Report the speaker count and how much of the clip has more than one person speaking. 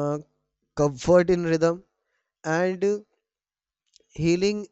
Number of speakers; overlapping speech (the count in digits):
1, no overlap